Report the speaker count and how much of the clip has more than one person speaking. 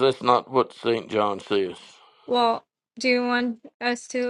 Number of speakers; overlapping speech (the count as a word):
two, no overlap